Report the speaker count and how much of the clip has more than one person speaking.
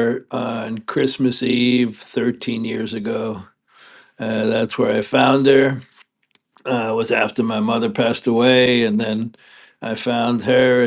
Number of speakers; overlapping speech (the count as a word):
one, no overlap